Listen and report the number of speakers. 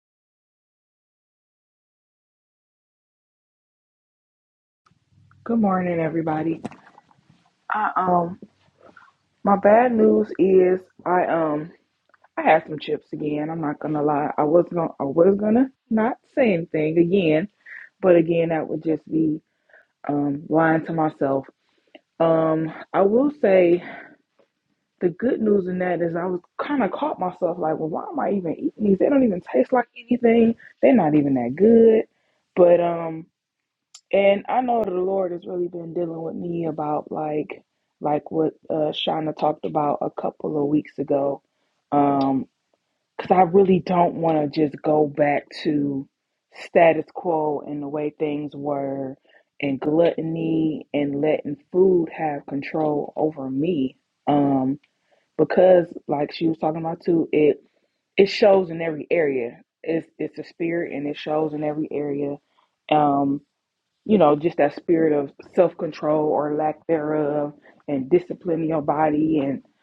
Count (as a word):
one